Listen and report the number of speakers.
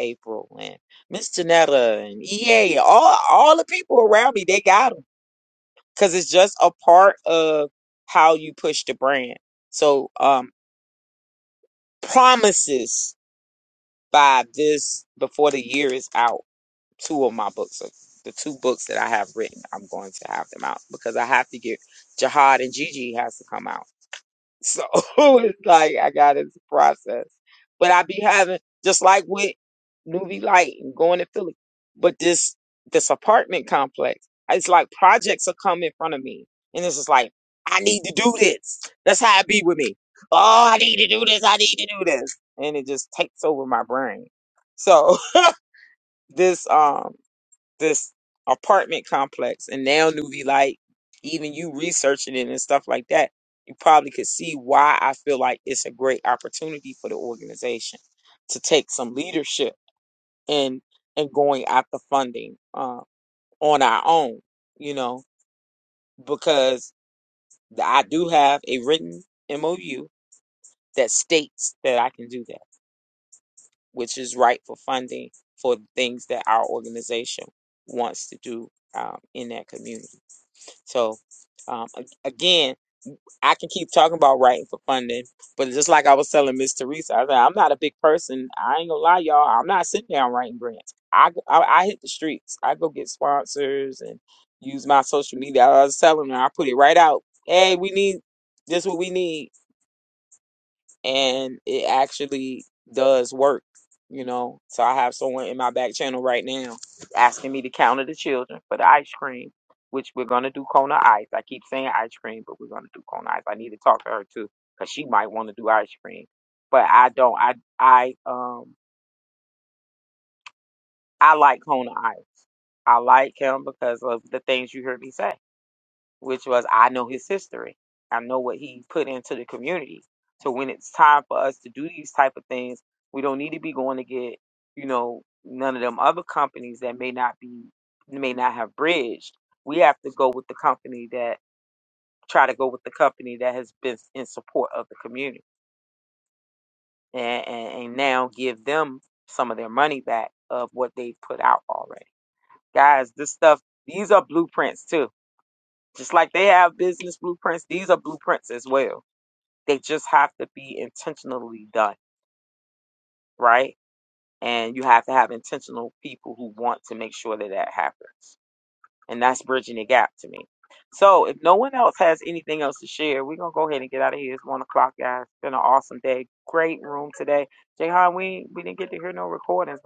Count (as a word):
one